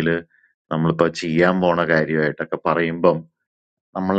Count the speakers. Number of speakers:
1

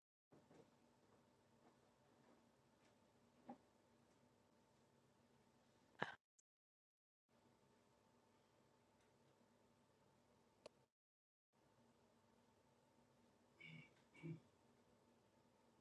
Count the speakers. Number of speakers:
0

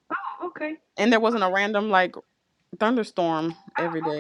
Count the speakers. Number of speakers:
2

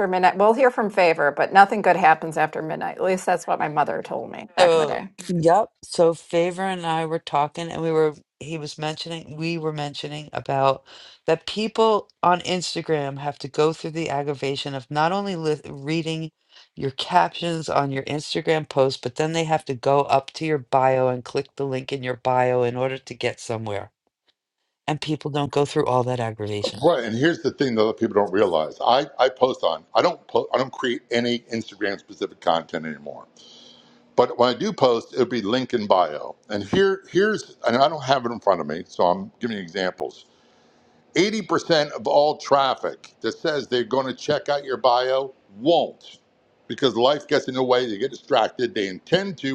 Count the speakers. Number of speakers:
3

